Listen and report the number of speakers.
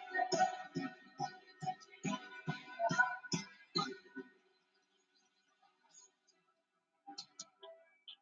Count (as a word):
zero